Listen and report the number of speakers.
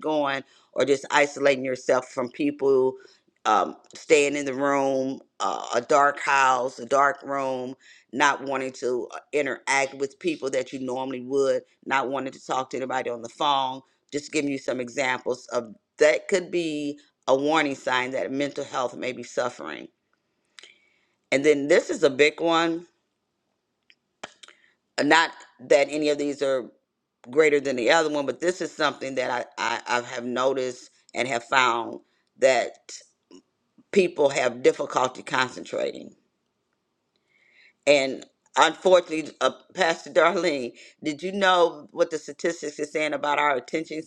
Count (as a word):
one